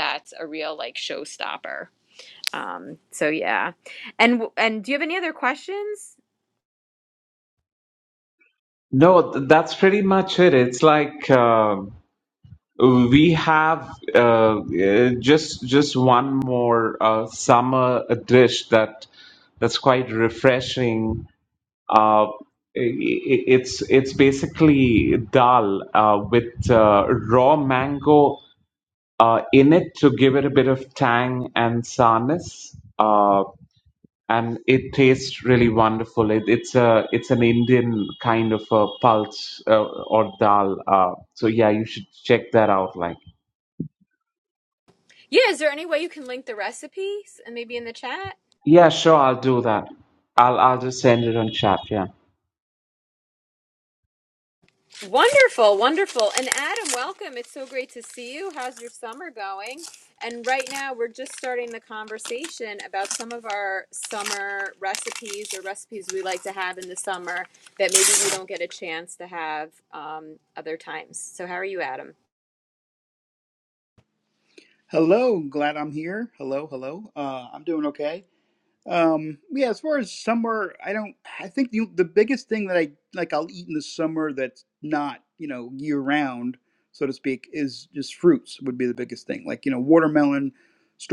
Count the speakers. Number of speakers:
three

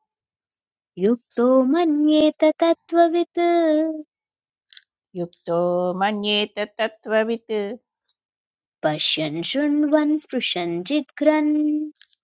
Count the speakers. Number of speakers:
two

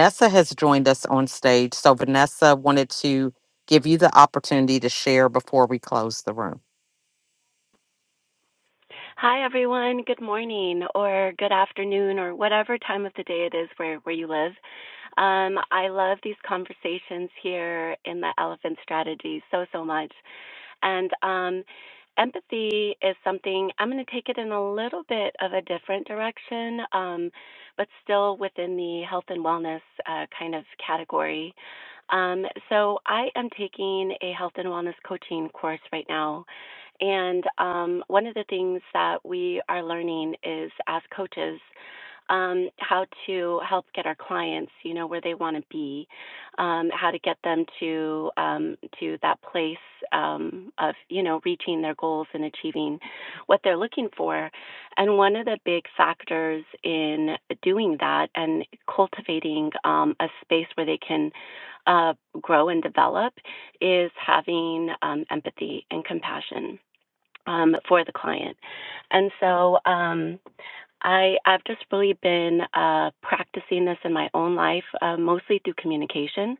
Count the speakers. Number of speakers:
two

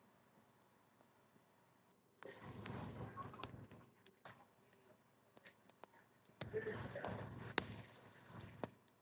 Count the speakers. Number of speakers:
zero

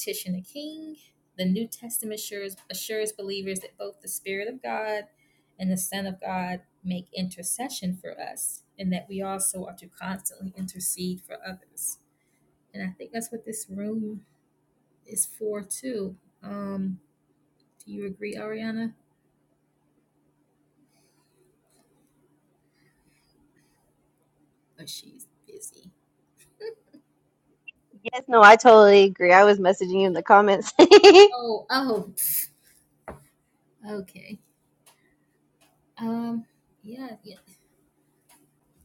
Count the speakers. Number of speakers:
two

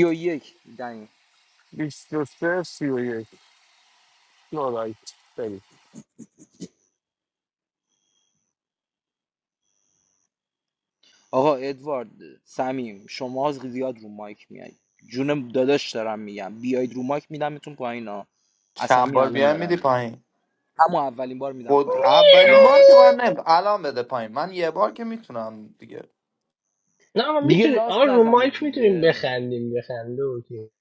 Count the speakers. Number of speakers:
four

